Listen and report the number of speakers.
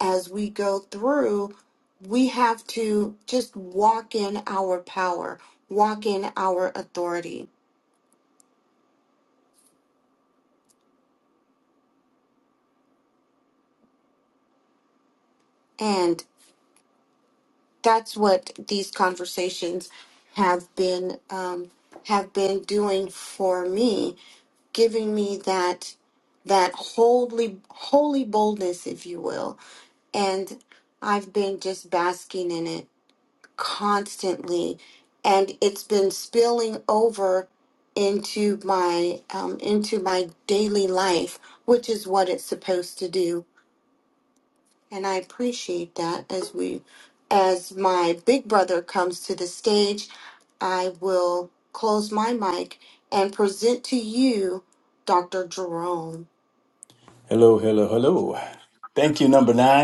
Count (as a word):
two